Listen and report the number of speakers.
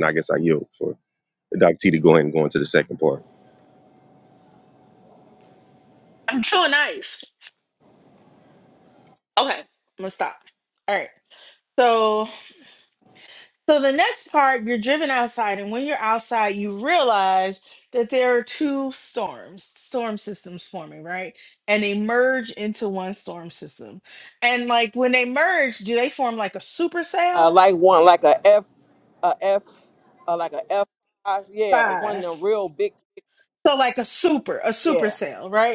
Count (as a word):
three